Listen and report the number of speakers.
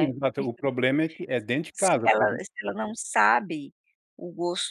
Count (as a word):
two